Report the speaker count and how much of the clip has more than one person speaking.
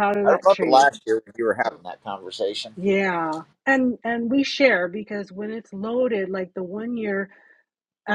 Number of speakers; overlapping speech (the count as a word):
two, about 8%